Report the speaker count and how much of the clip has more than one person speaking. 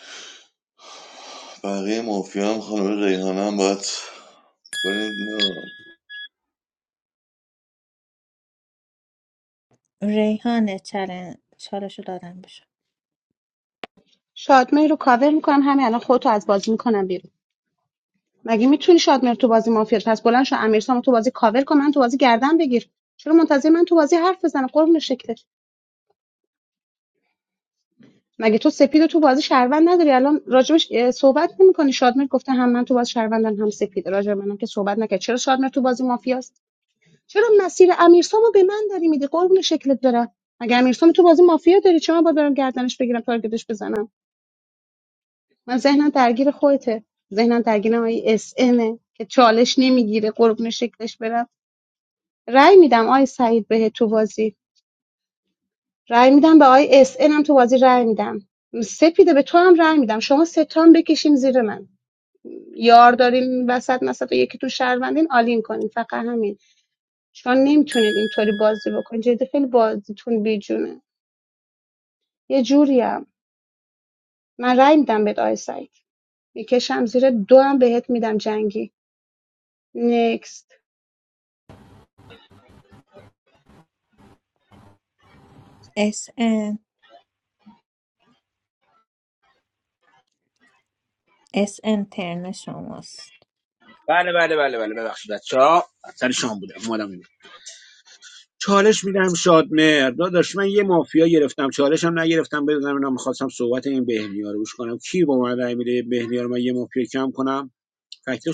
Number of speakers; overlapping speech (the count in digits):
4, no overlap